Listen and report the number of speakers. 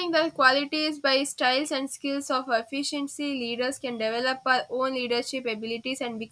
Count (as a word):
one